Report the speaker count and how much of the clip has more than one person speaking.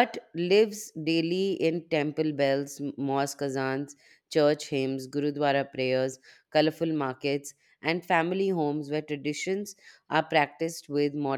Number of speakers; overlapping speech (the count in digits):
1, no overlap